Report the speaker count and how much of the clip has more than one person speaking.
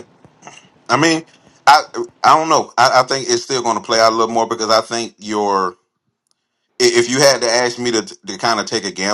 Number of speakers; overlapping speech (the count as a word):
one, no overlap